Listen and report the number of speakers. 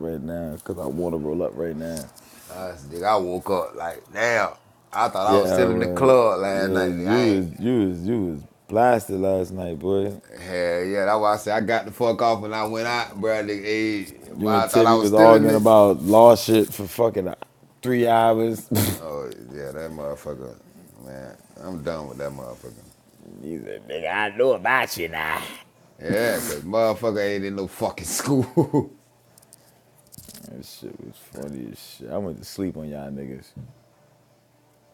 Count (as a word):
two